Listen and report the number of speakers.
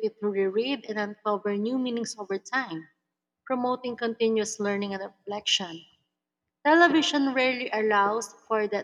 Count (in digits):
1